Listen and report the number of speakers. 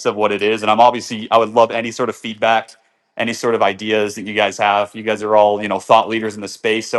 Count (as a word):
one